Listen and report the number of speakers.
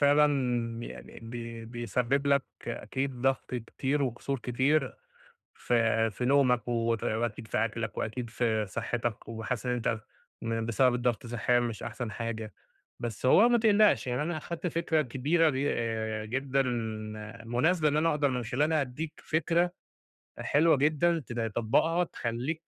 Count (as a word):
one